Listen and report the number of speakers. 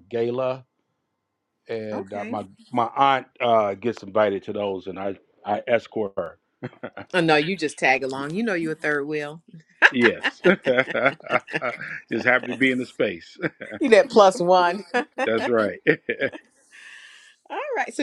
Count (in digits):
2